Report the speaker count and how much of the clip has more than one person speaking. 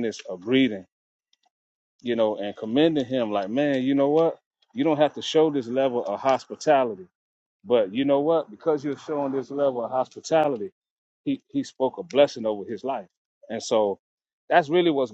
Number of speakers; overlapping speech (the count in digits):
1, no overlap